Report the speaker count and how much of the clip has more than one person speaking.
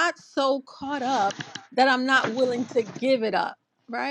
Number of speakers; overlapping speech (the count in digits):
1, no overlap